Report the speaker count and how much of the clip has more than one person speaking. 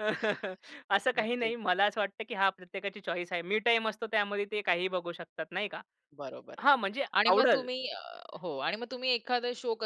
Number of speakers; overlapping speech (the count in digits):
2, about 10%